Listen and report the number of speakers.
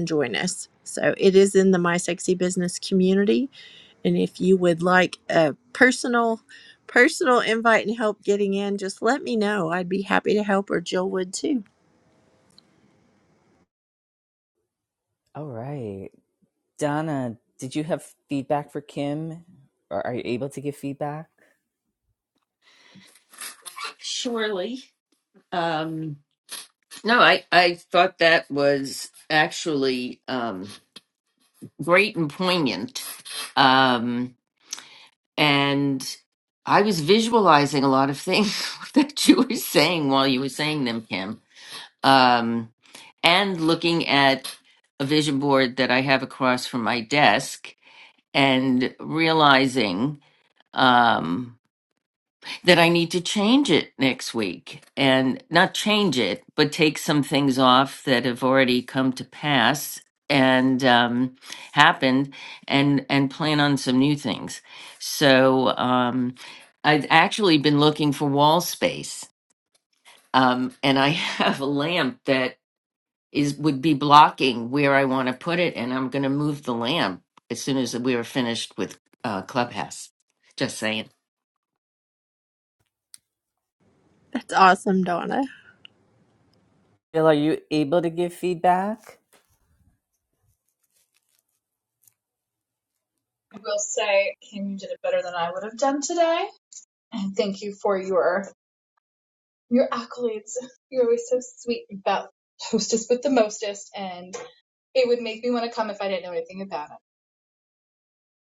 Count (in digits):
4